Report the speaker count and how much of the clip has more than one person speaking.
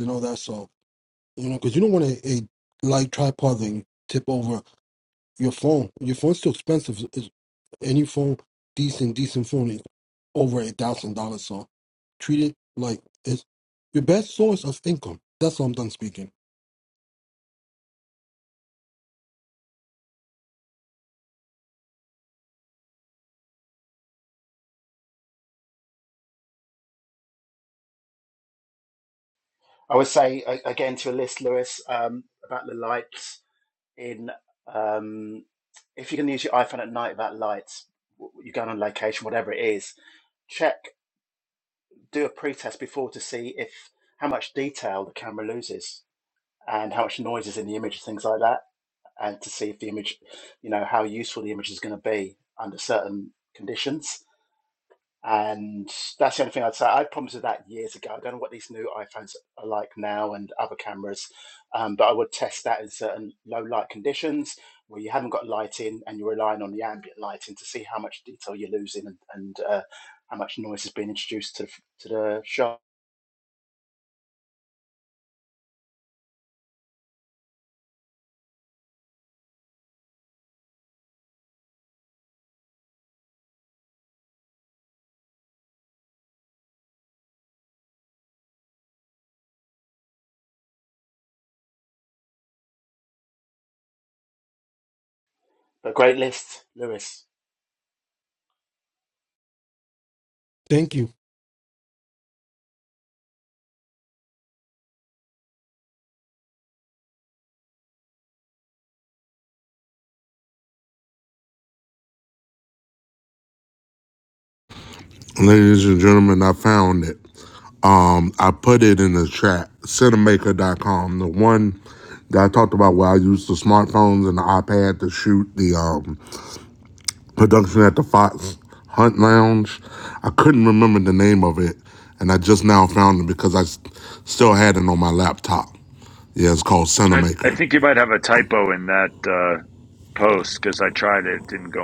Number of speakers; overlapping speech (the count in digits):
4, under 1%